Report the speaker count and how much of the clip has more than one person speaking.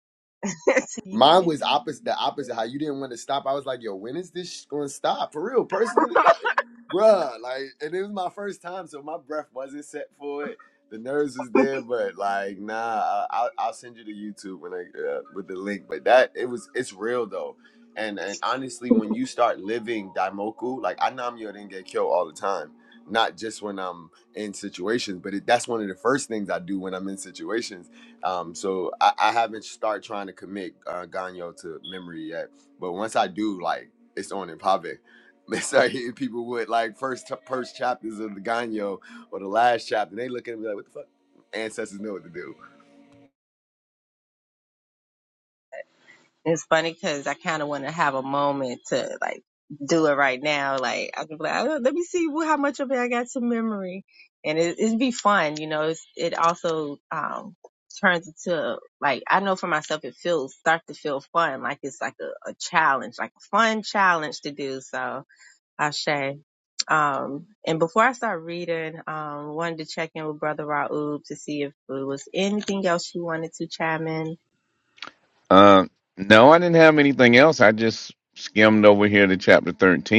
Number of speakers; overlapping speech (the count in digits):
3, under 1%